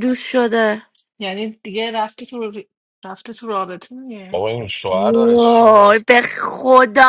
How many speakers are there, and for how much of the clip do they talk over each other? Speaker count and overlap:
3, about 15%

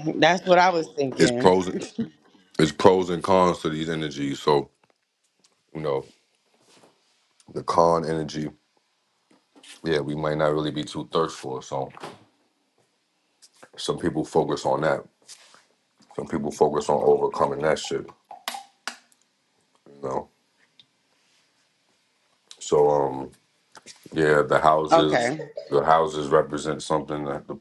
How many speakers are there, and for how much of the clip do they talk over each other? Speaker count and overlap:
2, about 2%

